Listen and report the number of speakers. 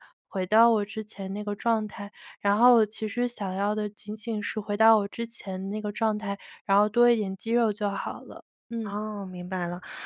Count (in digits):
2